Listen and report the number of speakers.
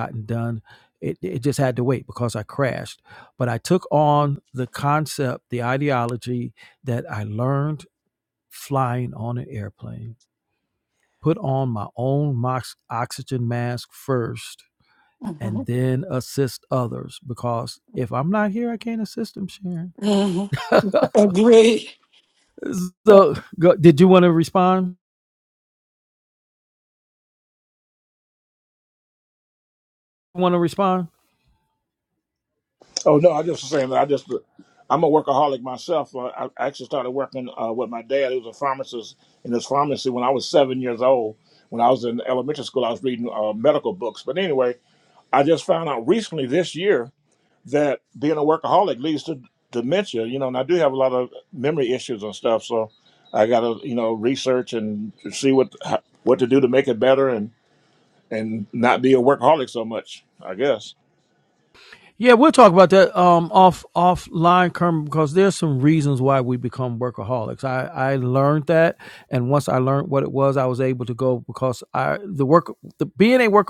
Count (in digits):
3